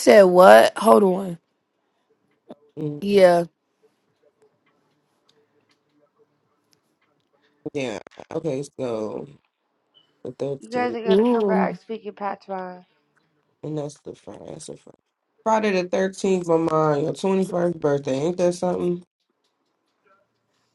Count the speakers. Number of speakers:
3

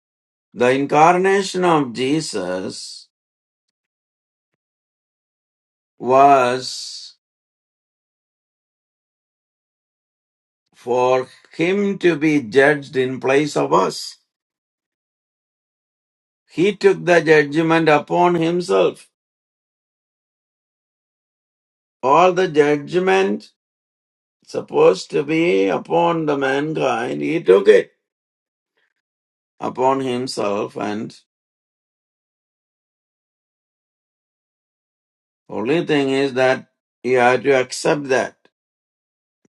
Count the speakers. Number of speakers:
1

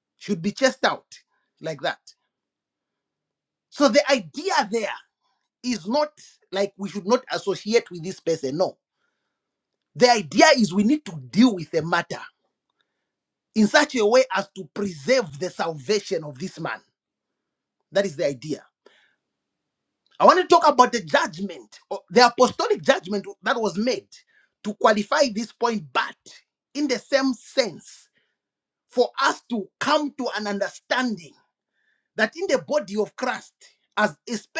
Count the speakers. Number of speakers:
1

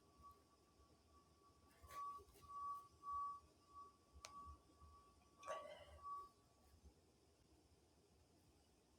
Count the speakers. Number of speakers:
0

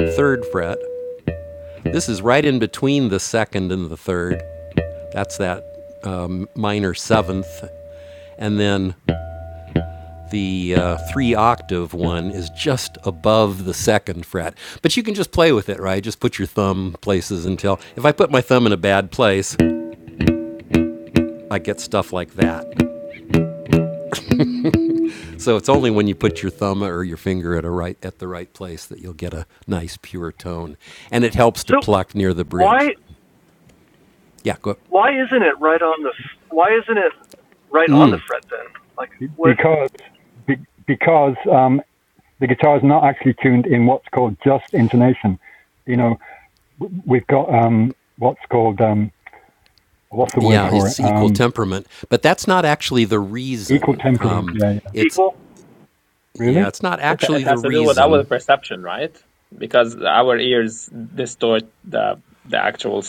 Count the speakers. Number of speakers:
4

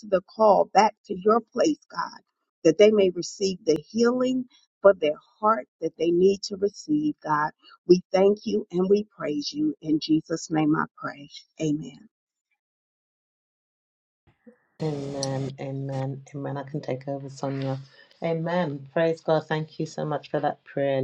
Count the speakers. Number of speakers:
2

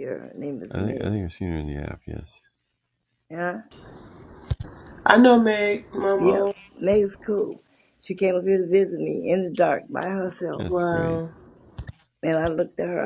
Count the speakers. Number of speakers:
3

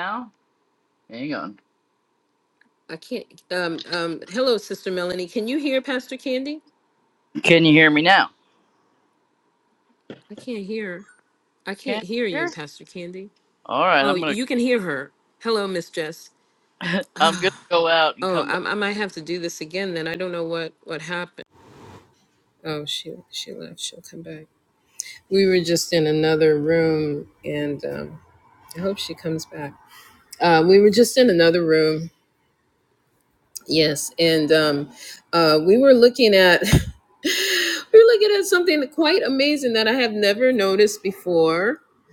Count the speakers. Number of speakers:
2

